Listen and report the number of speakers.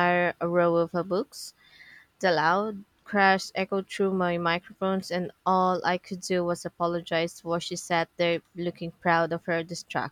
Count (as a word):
one